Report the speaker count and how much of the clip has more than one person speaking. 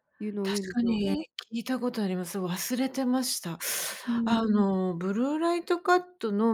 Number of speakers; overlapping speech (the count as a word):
two, about 14%